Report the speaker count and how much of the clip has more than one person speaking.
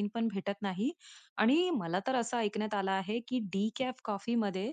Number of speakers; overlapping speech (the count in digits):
1, no overlap